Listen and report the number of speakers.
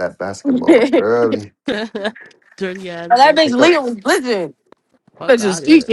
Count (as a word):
three